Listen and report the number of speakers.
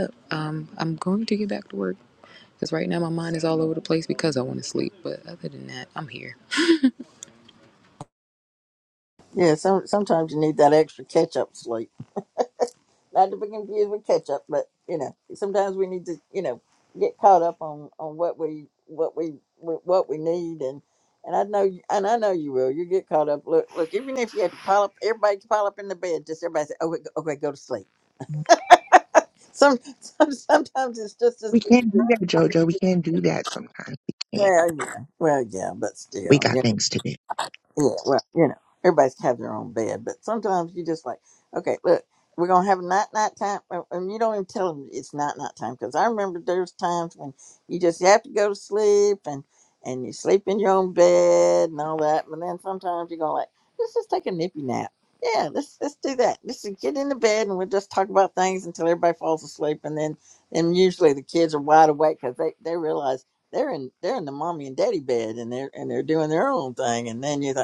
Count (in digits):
3